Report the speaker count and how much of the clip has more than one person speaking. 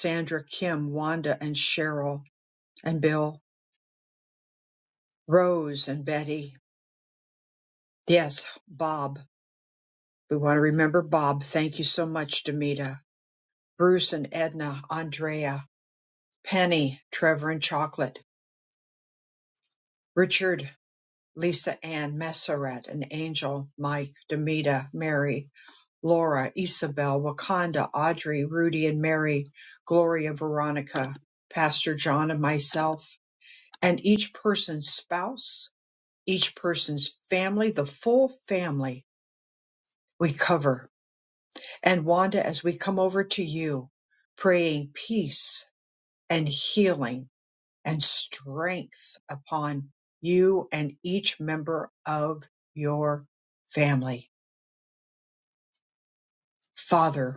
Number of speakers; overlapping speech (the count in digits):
1, no overlap